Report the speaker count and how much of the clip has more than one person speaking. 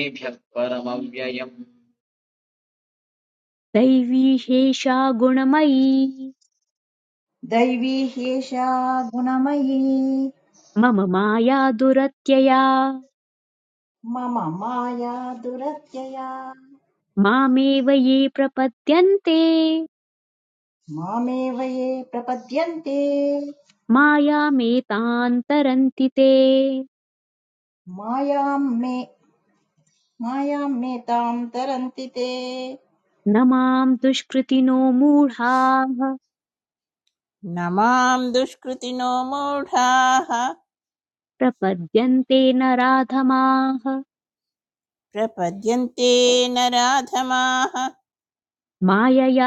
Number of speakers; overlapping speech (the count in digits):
4, no overlap